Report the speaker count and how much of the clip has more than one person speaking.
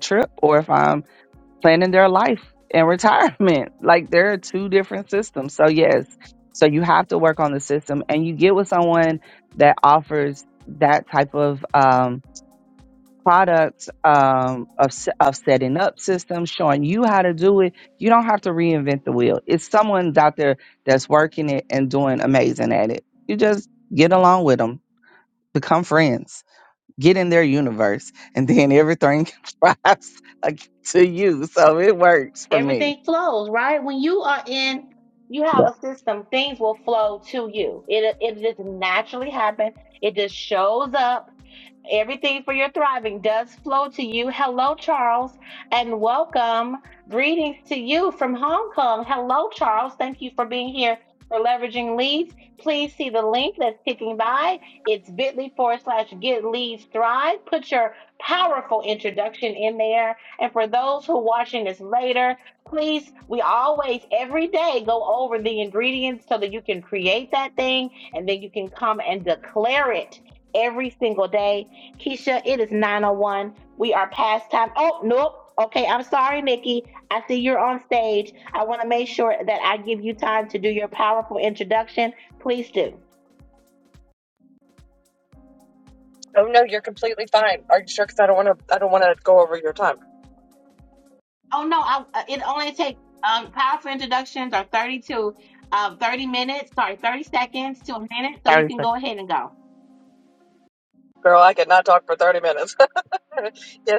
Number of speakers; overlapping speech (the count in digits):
3, about 1%